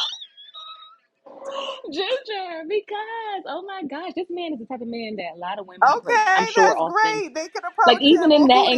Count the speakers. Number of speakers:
two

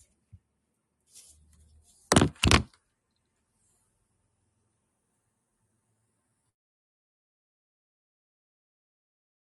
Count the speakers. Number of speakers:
zero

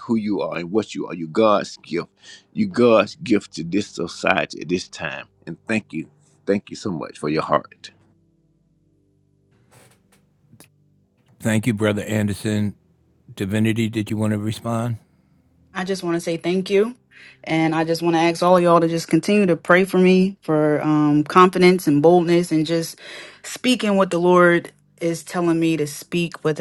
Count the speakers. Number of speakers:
three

